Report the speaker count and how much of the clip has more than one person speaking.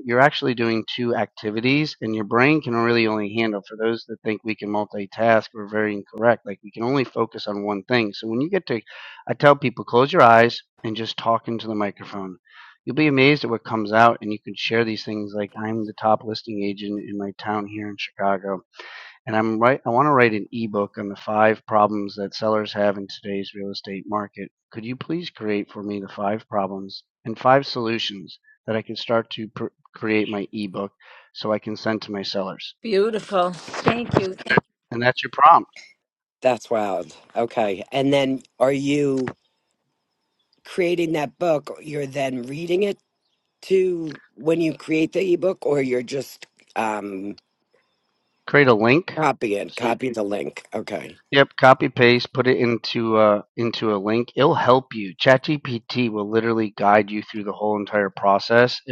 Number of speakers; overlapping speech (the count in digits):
3, under 1%